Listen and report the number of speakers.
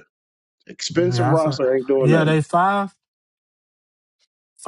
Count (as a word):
two